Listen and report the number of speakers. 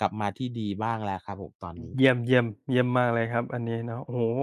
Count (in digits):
2